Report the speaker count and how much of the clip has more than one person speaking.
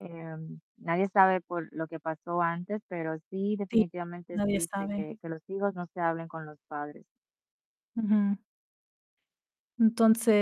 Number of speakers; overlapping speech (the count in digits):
2, about 8%